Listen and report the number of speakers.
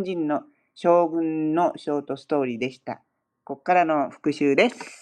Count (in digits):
1